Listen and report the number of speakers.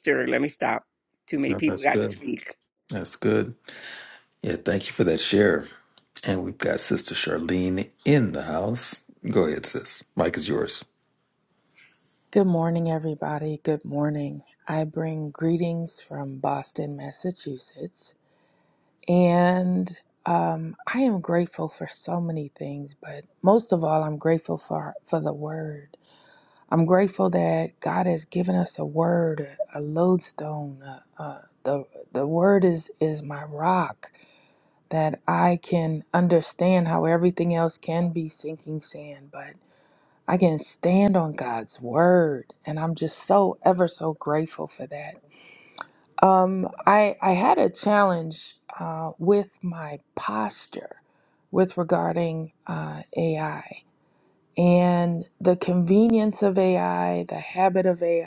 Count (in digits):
3